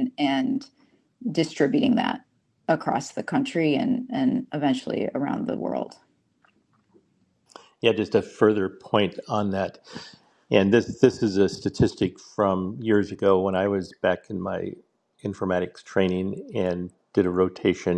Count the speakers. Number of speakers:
two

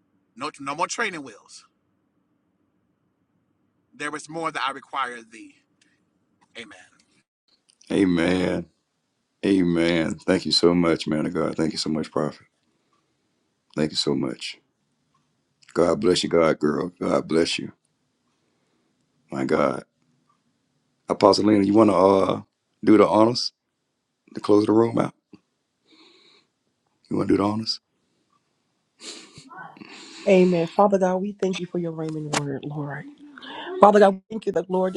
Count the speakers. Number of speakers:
three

